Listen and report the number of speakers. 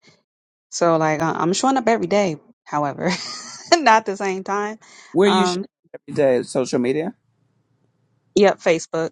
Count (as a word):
two